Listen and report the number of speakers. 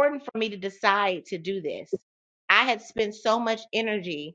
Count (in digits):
1